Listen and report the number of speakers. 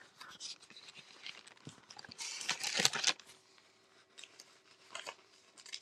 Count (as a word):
zero